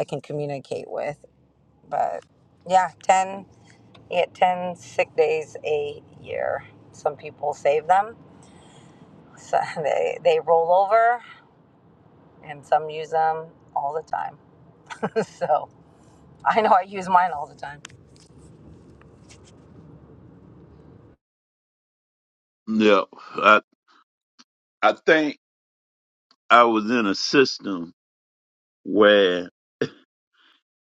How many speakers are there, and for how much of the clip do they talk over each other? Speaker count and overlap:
two, no overlap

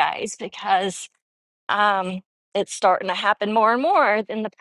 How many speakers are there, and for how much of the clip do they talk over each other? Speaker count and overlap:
one, no overlap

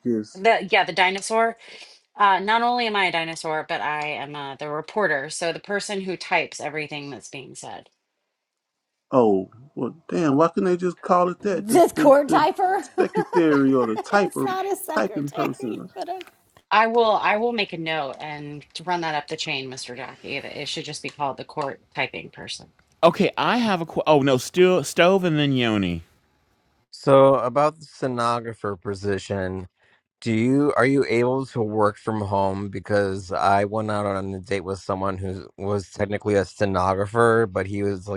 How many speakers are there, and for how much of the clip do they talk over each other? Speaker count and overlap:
five, about 6%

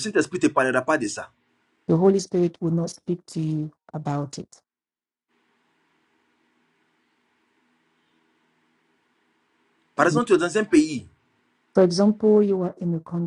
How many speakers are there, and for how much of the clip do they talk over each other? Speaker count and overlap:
two, about 2%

